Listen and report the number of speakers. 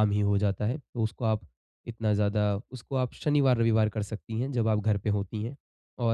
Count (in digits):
1